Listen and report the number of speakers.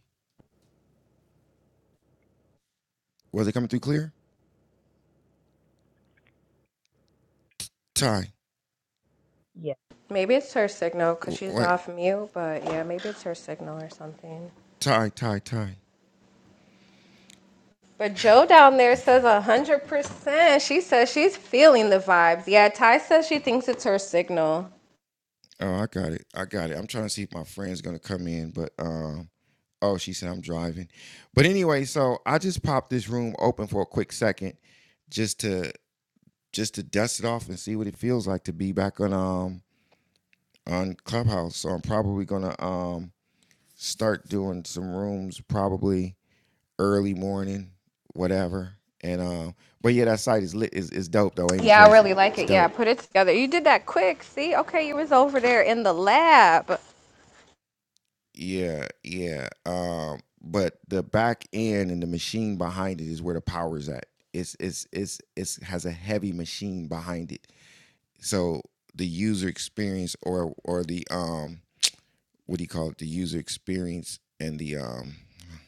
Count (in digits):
2